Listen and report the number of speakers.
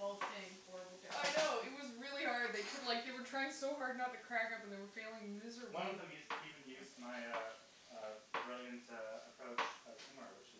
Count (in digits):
3